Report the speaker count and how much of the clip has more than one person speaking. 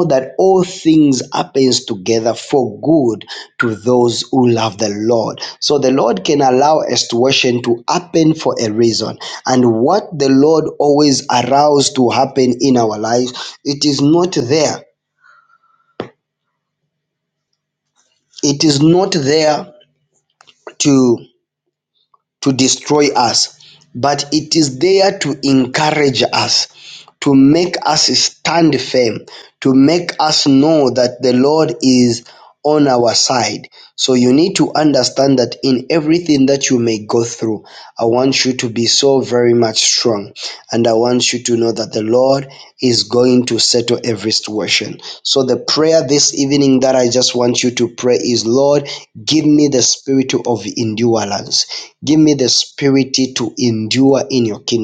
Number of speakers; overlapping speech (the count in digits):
1, no overlap